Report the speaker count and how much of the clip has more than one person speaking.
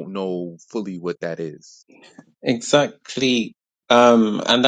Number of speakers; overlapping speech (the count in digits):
2, no overlap